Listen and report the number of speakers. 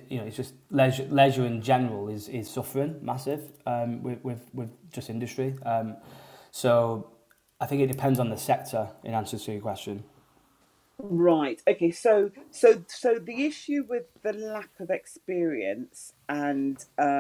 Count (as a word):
two